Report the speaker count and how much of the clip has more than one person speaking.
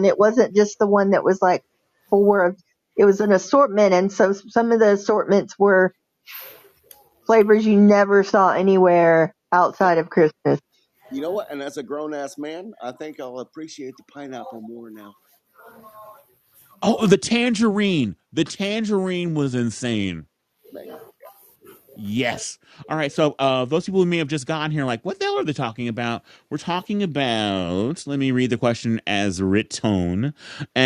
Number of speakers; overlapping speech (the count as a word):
three, under 1%